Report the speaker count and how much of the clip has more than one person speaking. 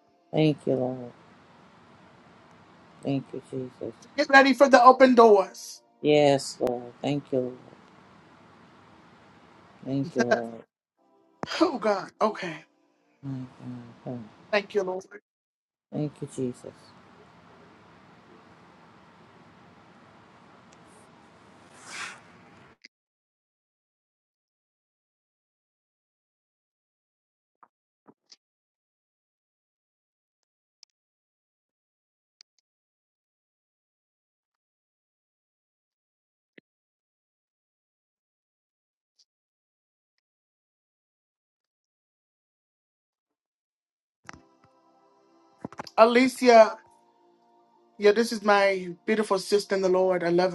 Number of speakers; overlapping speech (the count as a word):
two, no overlap